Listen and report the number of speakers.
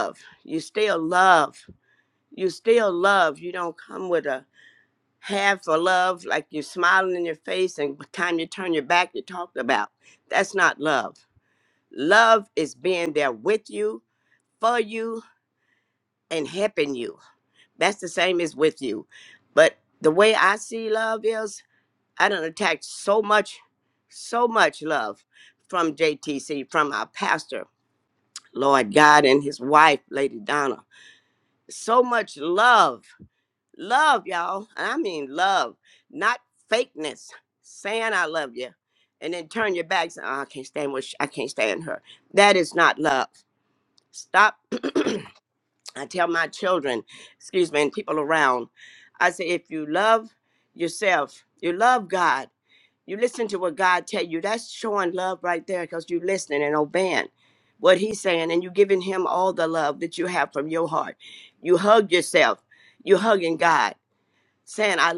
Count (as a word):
one